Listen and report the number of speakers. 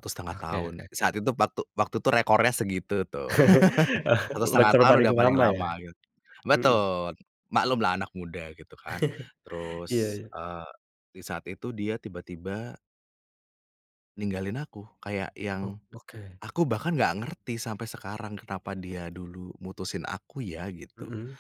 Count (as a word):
two